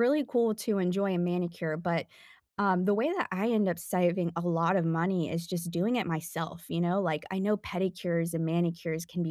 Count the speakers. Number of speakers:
1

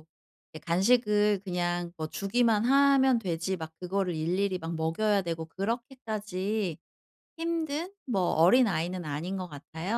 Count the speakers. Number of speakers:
1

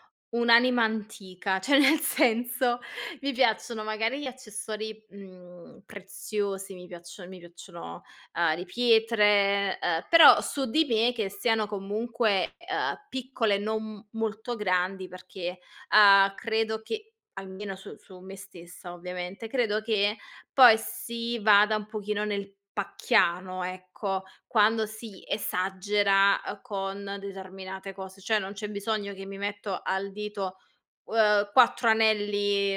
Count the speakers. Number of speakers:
1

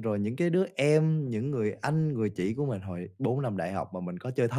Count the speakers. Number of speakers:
1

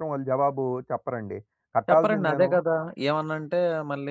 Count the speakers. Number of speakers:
2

